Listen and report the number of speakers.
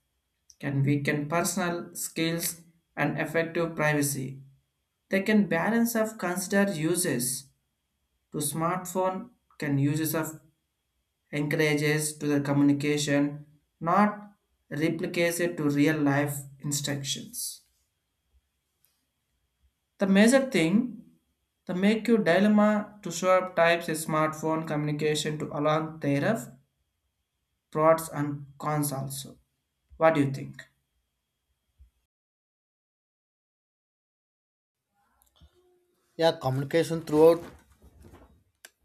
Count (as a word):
two